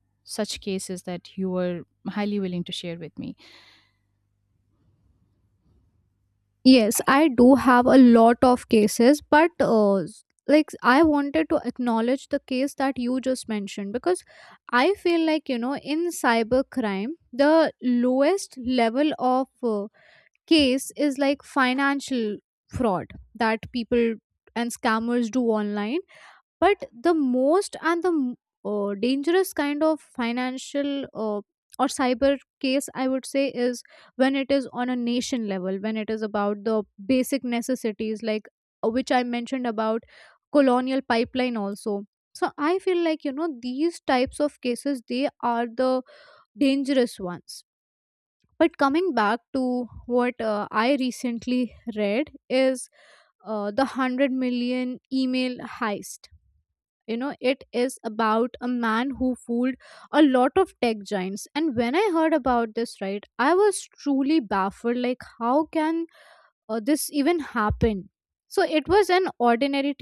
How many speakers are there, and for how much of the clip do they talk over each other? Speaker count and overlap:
two, no overlap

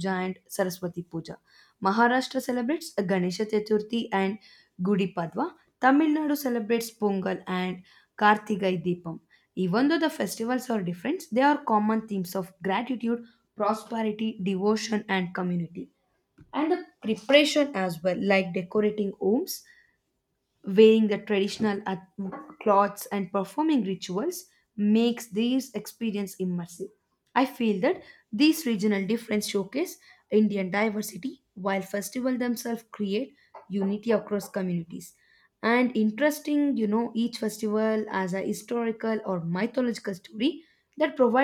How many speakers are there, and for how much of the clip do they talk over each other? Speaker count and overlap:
one, no overlap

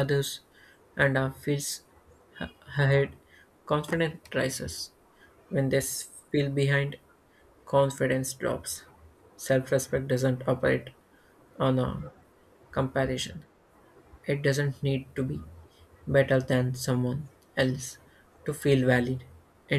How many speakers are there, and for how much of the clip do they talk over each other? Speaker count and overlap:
one, no overlap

